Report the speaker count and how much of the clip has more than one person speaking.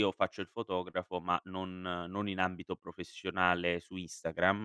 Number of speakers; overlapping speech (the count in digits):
1, no overlap